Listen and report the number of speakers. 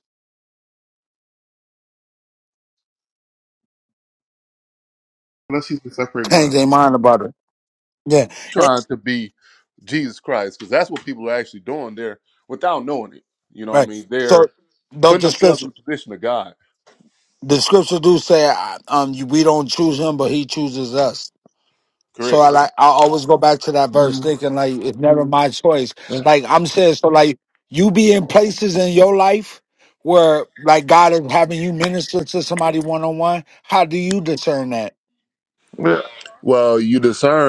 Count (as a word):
three